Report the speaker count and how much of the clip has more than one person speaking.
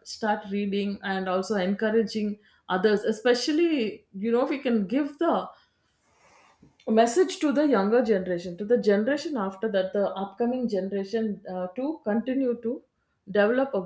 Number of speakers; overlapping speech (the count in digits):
1, no overlap